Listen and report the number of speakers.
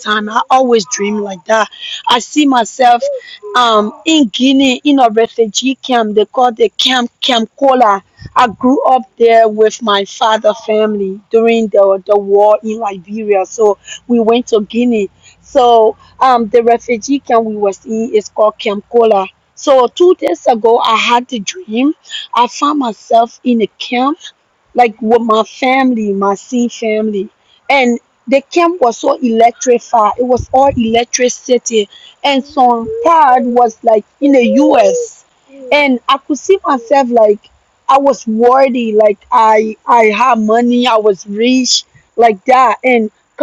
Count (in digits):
1